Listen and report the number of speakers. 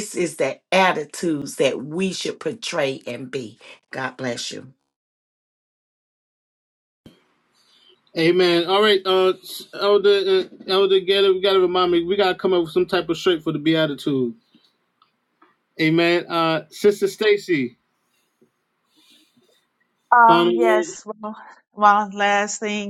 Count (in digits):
3